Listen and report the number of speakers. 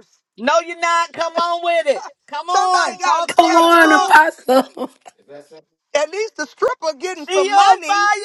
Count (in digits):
3